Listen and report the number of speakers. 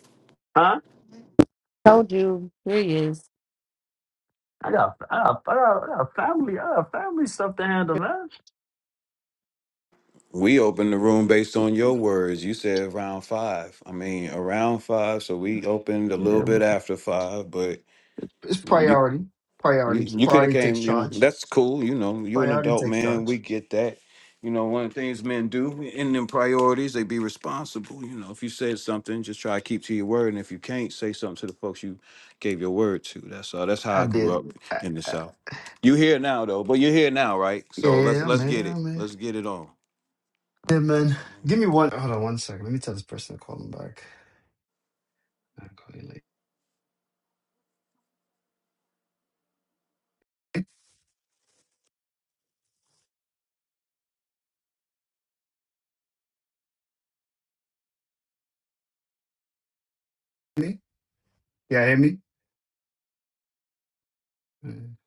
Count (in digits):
3